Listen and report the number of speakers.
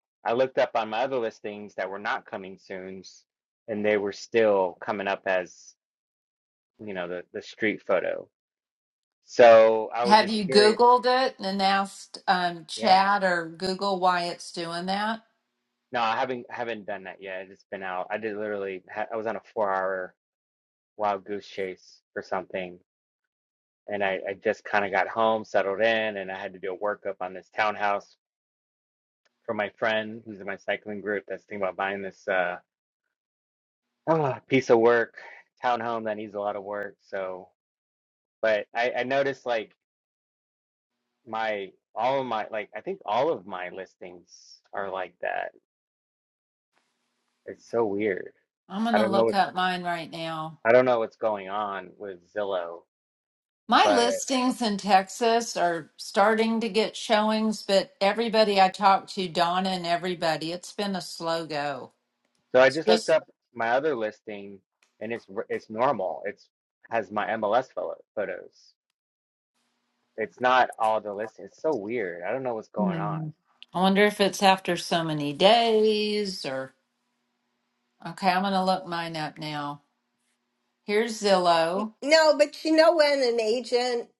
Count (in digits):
3